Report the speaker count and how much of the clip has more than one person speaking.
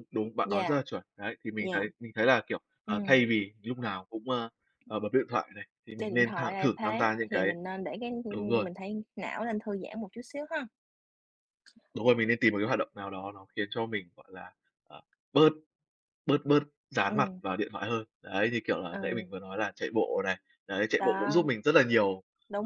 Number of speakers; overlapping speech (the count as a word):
two, about 17%